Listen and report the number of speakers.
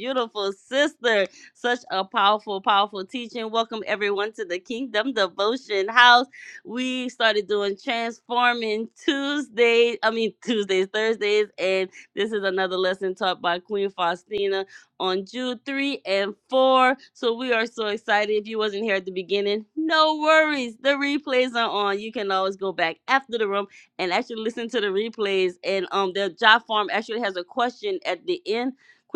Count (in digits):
1